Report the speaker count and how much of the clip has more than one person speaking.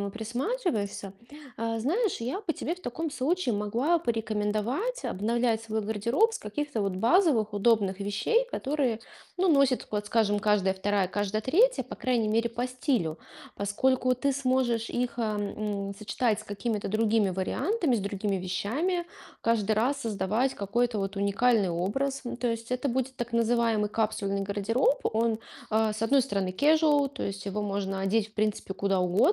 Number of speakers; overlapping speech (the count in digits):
1, no overlap